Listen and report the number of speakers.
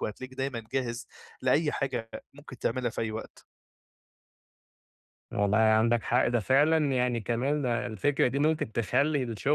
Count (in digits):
2